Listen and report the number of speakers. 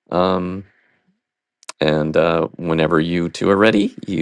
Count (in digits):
1